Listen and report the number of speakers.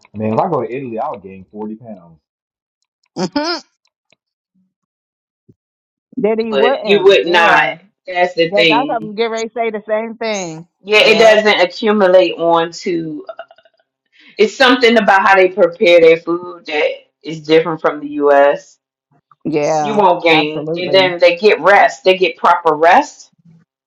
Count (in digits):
3